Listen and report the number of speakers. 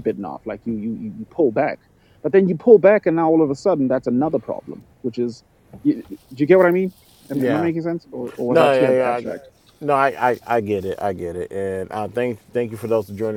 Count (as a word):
two